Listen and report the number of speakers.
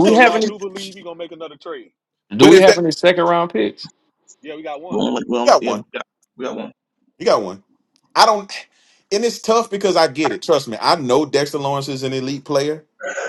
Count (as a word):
four